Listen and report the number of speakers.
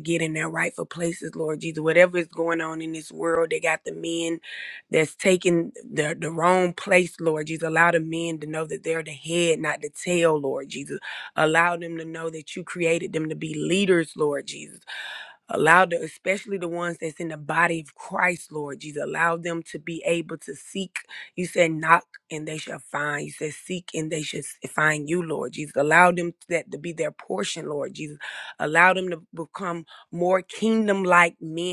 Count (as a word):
one